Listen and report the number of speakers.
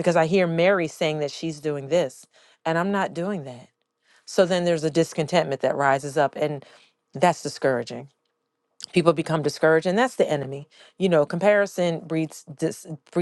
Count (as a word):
one